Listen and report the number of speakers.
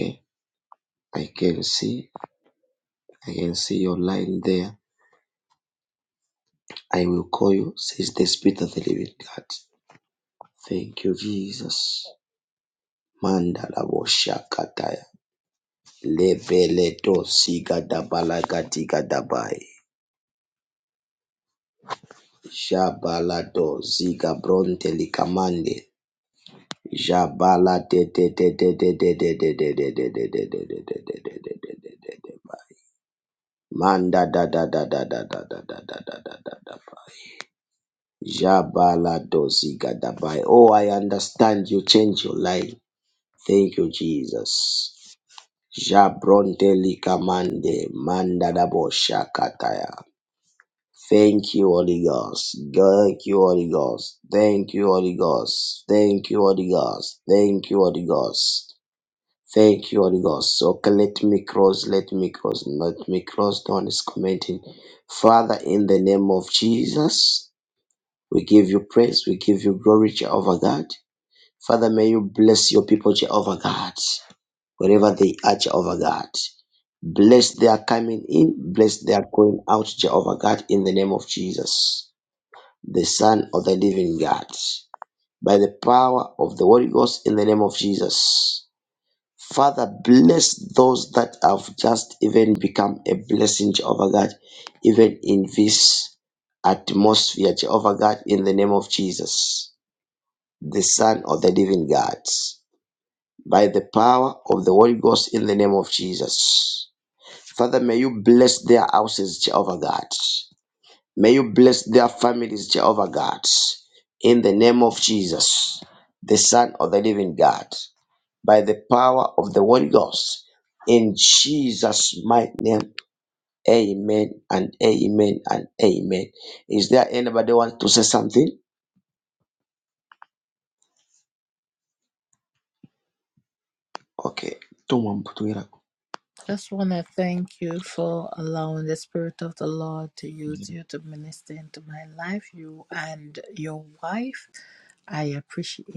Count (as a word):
two